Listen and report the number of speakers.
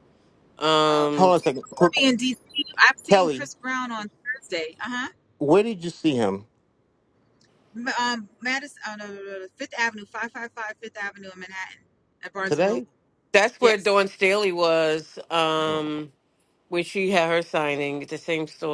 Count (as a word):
three